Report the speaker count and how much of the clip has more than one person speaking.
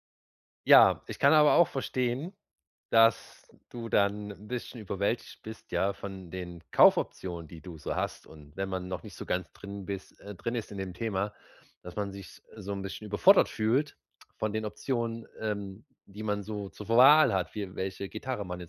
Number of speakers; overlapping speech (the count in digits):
1, no overlap